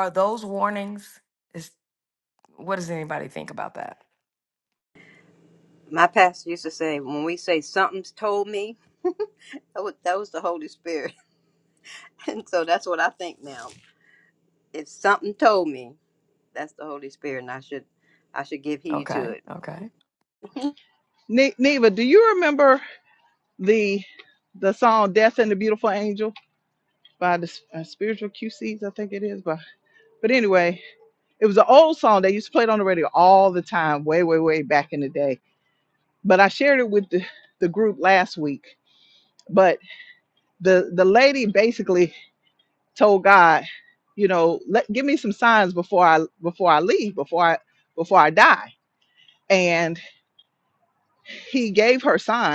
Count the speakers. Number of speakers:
3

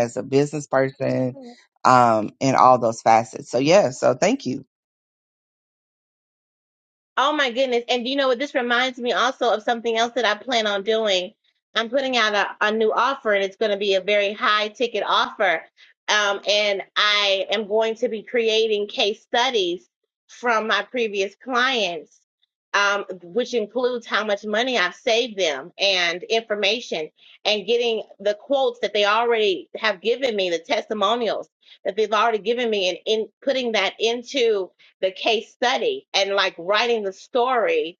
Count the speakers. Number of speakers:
2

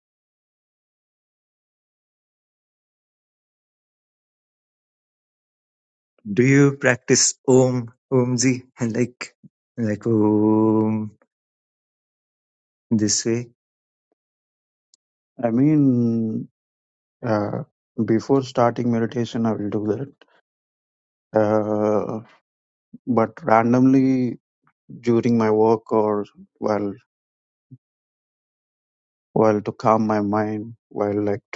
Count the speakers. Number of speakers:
2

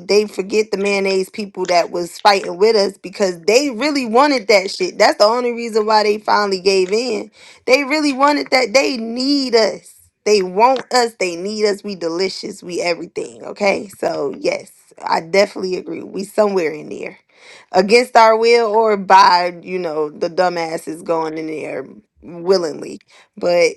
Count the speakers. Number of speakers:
1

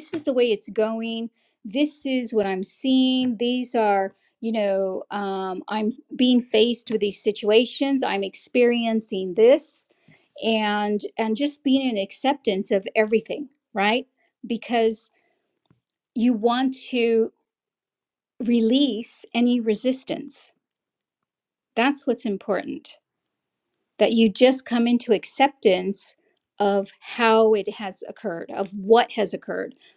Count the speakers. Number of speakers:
1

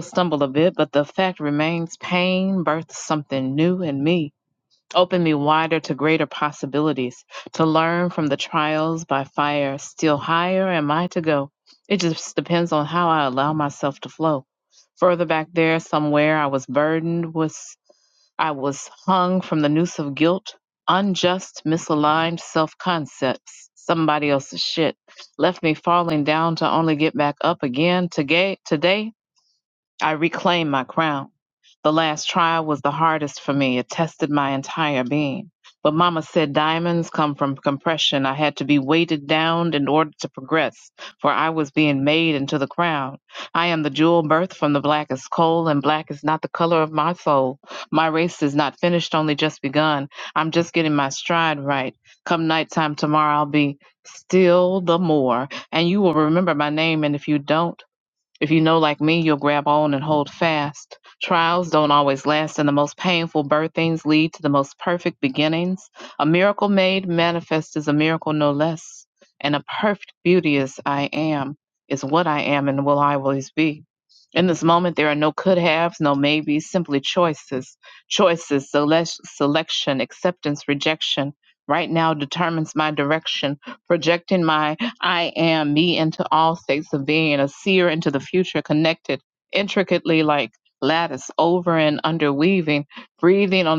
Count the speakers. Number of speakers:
1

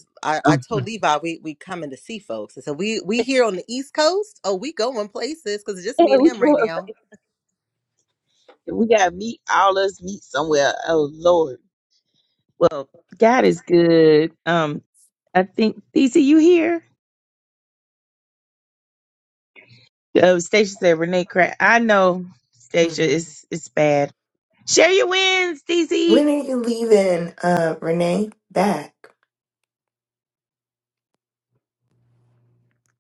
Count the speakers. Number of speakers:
3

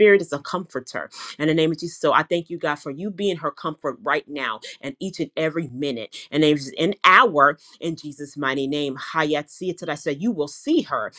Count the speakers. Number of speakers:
1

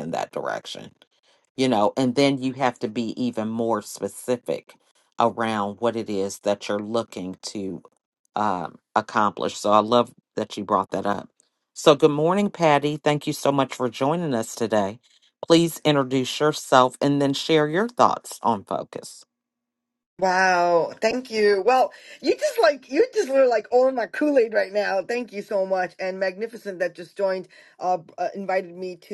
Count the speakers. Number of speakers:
2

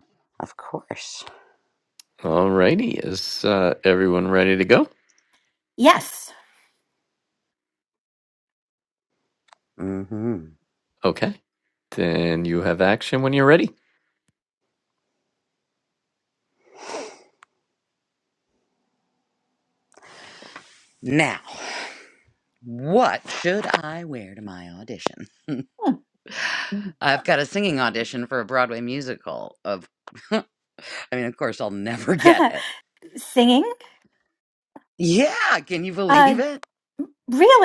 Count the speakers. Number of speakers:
3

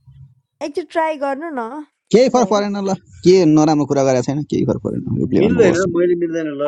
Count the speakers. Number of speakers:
3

